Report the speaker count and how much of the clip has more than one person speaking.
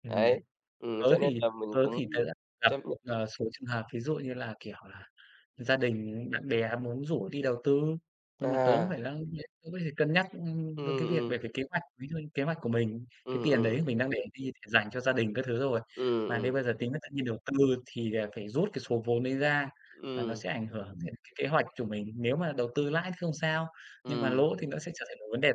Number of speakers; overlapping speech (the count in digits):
2, about 16%